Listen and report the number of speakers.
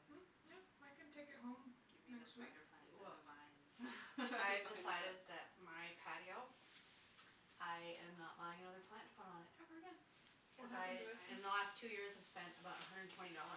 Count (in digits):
3